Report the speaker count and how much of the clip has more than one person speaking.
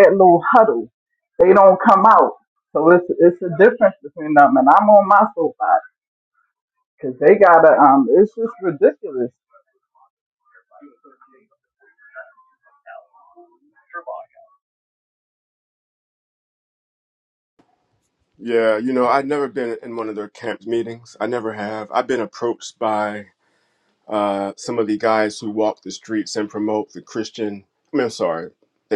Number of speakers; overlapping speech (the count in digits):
2, no overlap